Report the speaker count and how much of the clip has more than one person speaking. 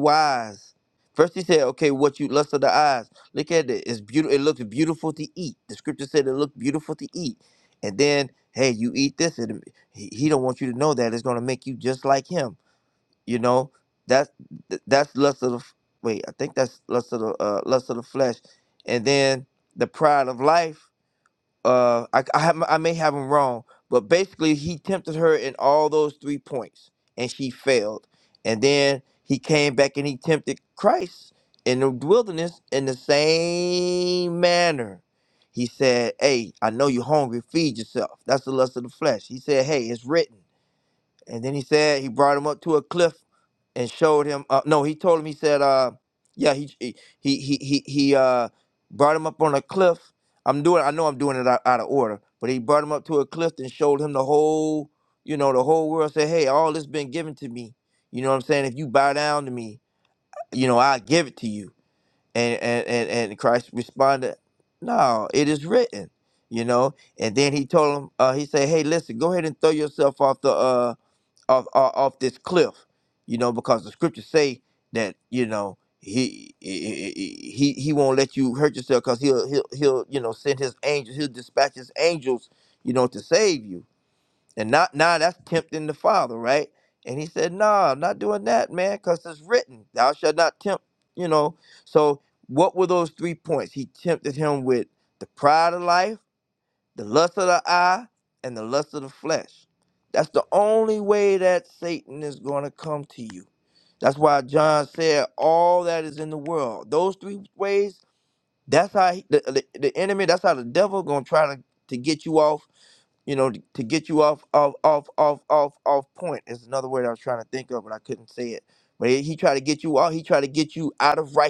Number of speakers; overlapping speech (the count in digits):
1, no overlap